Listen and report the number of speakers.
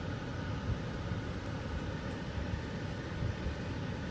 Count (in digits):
0